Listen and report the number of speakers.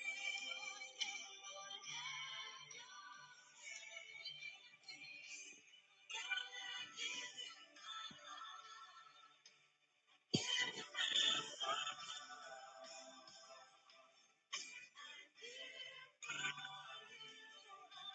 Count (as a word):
zero